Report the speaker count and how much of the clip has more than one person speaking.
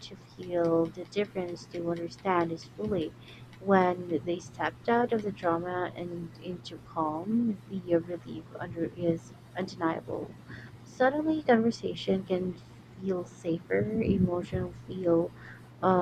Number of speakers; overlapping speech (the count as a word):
one, no overlap